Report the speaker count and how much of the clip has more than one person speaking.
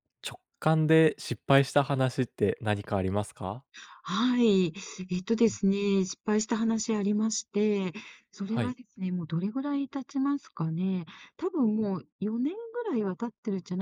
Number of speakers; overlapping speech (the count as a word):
two, about 1%